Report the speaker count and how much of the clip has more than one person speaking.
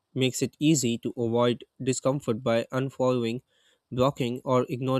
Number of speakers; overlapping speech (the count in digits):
1, no overlap